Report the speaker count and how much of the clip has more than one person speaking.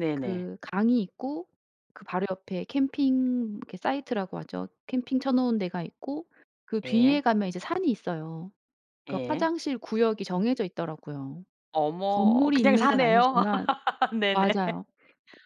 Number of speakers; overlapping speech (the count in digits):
2, about 16%